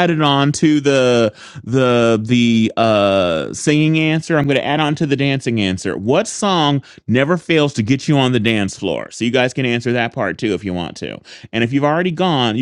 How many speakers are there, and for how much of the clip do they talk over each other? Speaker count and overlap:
one, no overlap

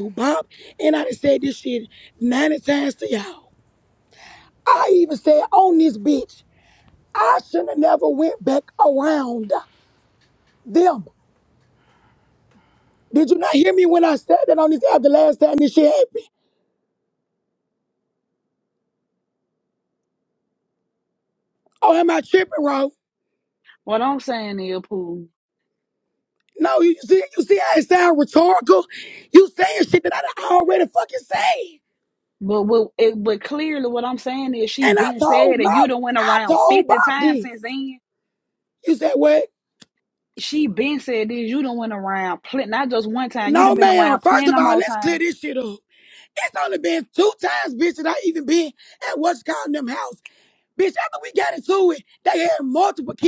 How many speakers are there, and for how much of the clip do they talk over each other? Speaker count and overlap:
two, about 7%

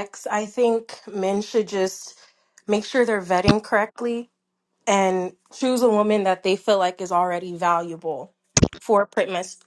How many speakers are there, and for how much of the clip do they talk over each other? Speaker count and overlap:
one, no overlap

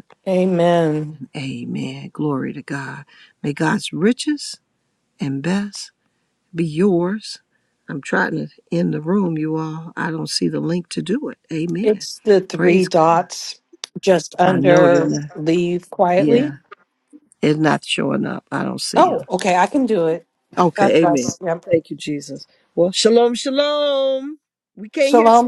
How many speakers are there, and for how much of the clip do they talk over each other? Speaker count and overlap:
two, about 13%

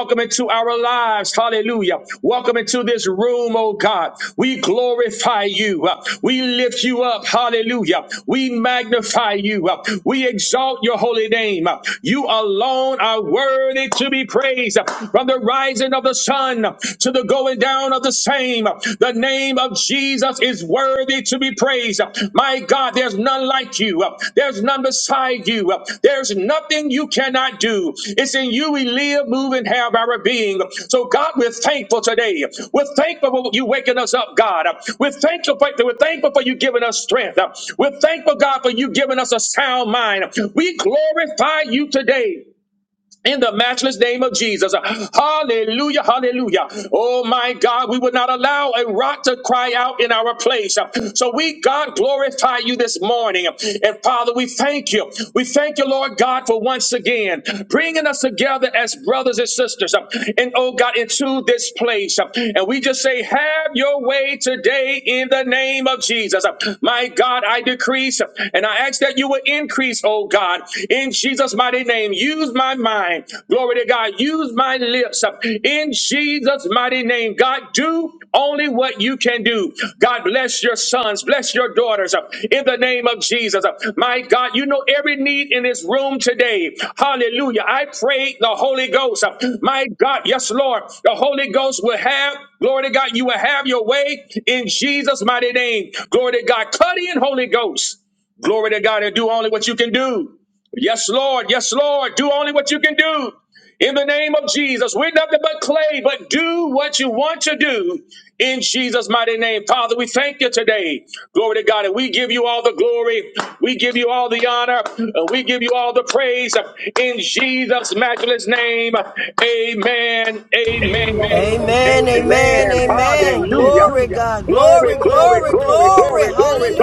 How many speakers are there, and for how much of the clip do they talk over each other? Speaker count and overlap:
two, about 3%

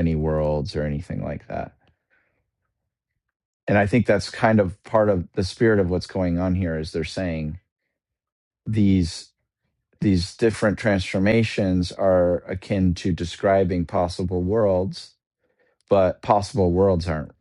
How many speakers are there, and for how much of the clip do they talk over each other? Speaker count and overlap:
one, no overlap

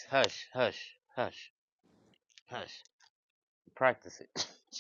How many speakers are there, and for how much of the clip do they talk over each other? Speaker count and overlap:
one, no overlap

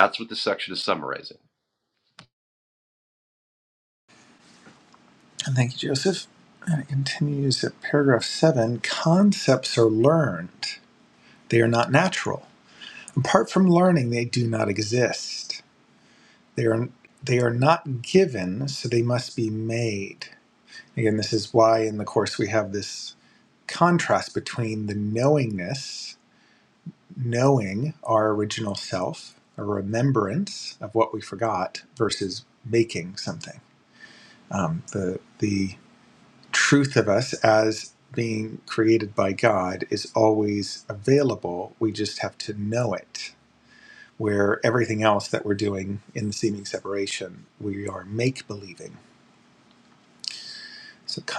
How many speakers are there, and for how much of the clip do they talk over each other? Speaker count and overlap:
two, no overlap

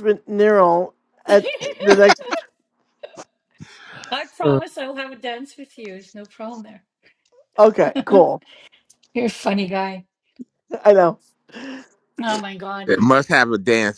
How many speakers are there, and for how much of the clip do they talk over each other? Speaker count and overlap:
three, about 2%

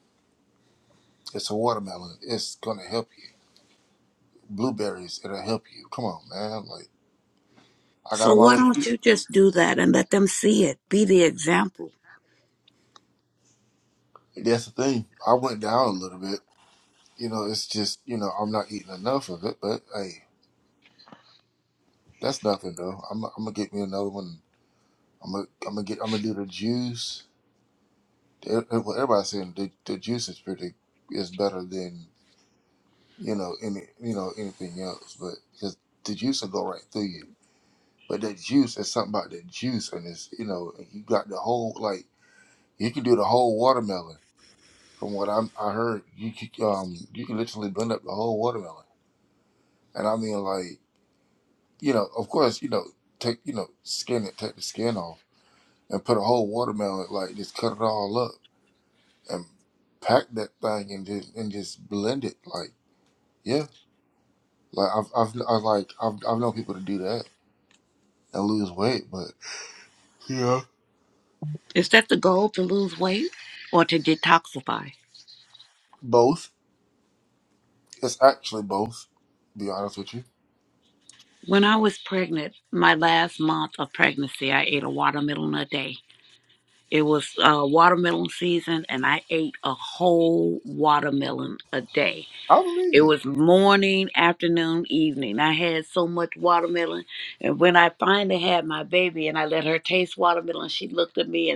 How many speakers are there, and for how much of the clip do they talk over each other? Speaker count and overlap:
two, about 1%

